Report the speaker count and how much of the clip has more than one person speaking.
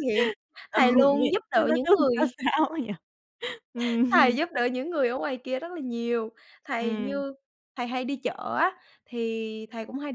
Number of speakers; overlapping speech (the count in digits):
2, about 22%